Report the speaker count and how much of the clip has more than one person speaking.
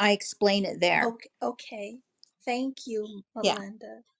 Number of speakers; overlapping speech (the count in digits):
2, about 7%